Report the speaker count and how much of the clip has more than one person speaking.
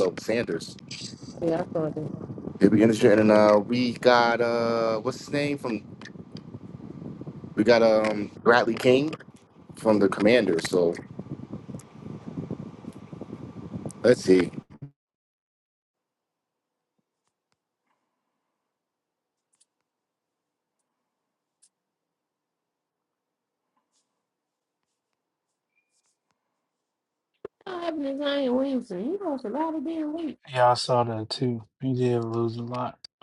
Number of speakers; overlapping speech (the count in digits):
3, no overlap